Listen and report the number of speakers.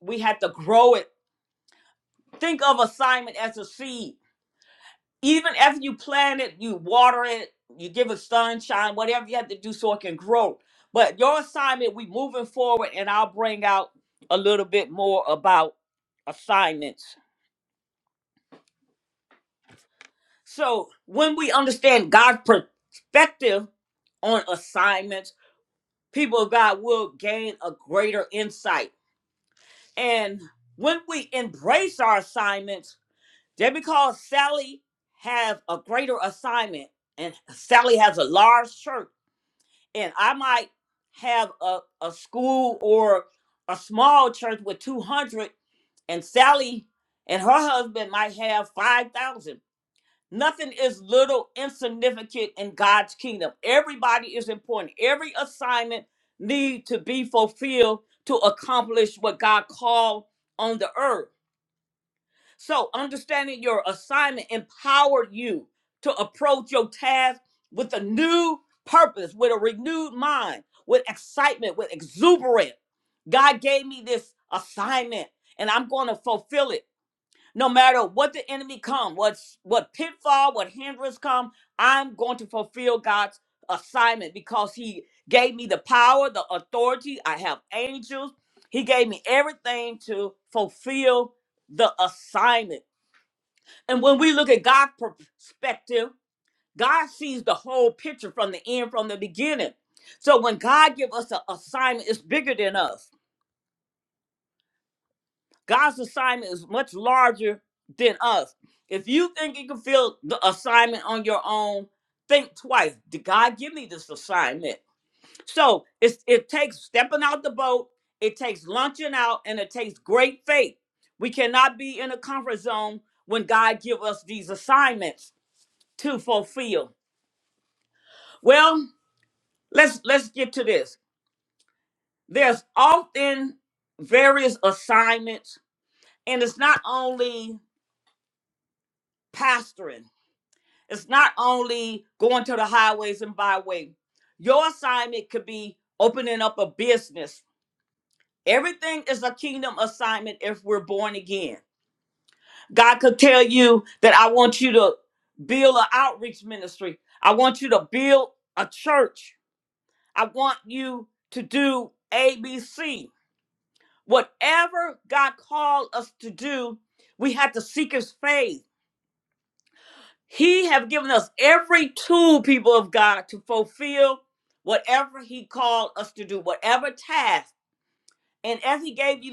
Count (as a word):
one